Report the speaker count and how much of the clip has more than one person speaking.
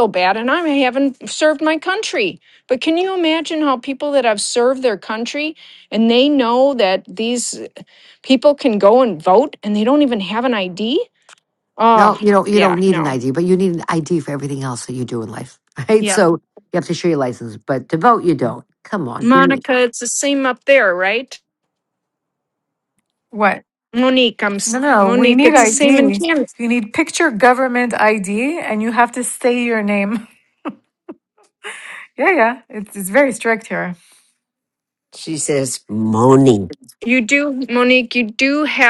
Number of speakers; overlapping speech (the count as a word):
four, about 7%